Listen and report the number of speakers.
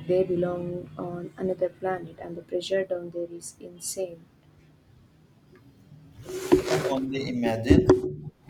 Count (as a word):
two